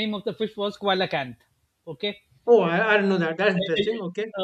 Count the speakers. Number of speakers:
two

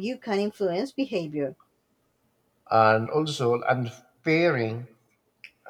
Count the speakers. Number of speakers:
two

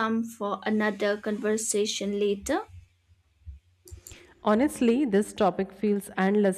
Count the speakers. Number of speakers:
two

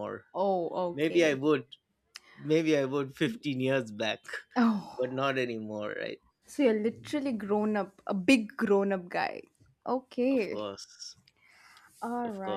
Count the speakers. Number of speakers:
two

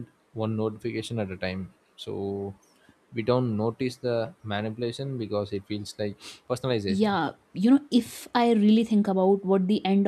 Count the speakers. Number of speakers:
two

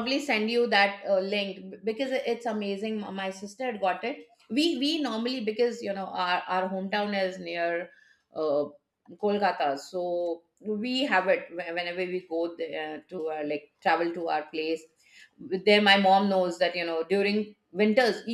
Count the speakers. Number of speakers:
one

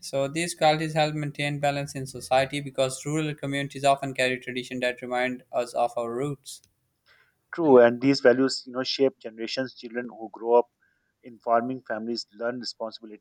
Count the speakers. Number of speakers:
two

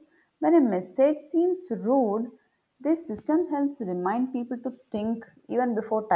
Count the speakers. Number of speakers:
one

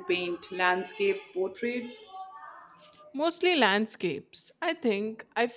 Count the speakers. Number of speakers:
two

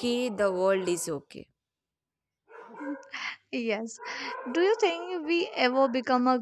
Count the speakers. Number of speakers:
two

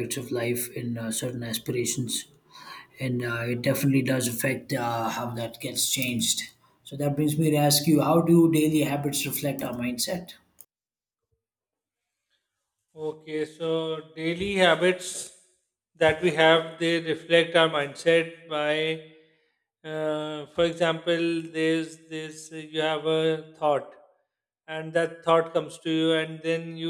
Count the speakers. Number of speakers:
two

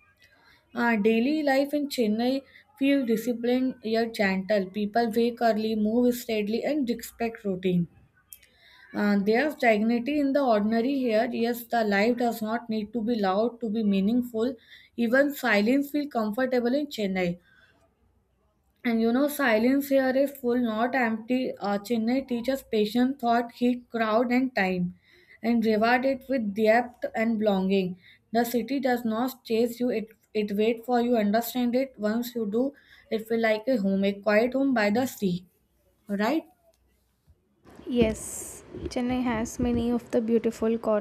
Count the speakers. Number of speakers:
two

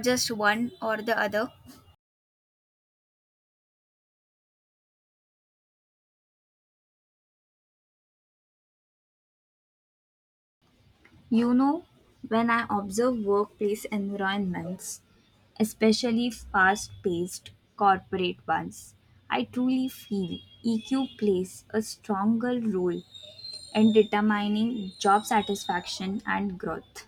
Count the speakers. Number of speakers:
two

